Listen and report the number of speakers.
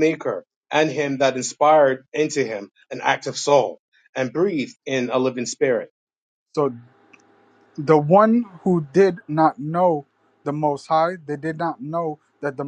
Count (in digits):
2